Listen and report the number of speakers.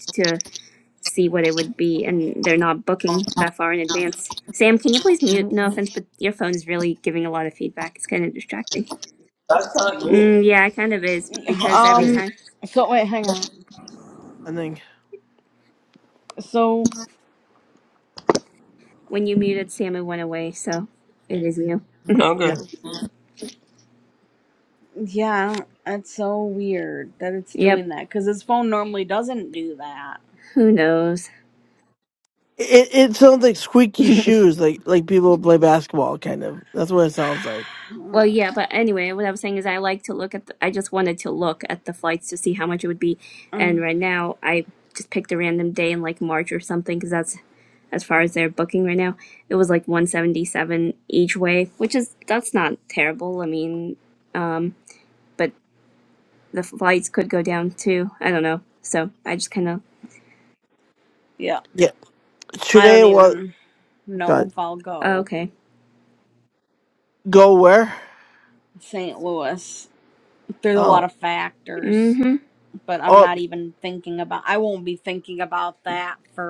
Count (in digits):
4